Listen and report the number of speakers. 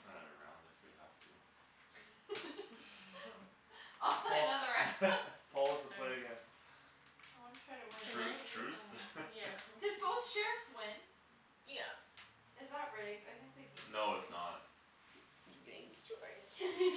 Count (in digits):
4